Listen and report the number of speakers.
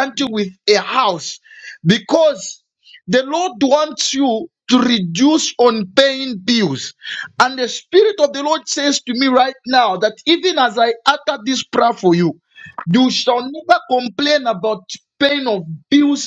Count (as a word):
one